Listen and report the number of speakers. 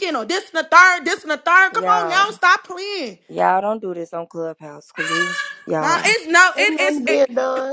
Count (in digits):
3